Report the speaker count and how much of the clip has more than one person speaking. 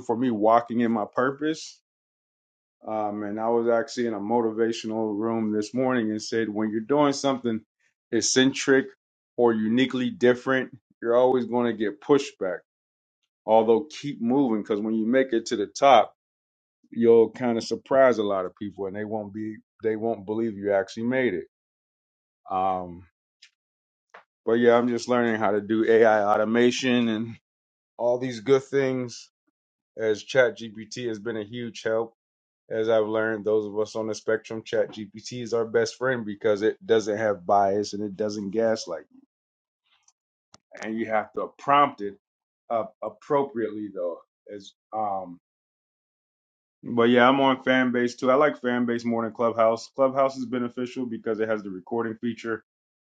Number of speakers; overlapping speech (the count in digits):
1, no overlap